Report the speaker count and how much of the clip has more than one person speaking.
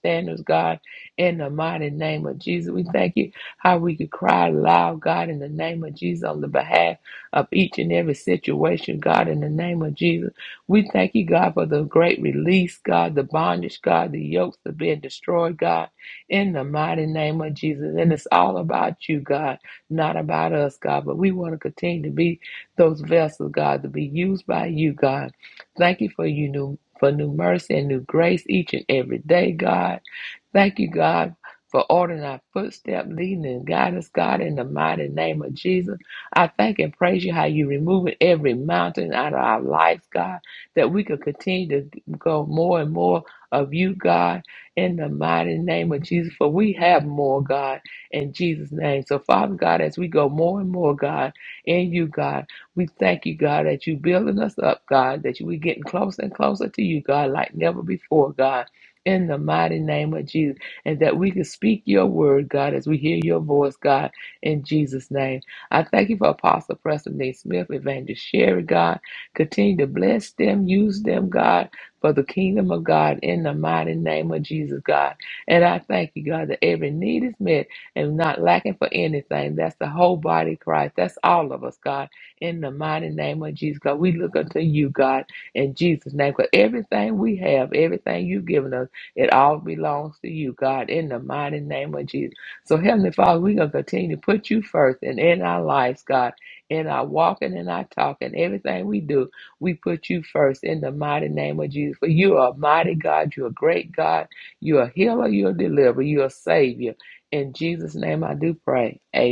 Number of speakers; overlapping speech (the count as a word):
one, no overlap